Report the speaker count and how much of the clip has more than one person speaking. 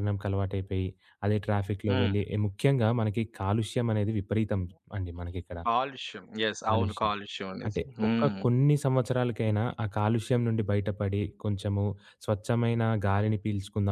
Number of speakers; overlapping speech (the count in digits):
2, about 11%